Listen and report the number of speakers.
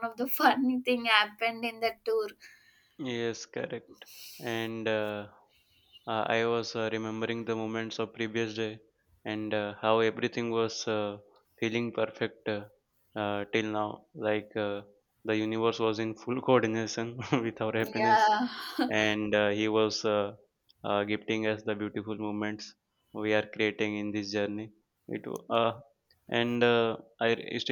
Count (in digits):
2